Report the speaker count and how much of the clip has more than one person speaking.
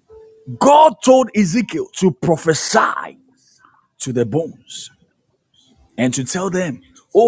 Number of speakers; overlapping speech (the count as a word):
one, no overlap